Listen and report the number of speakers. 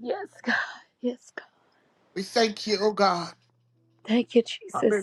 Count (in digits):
2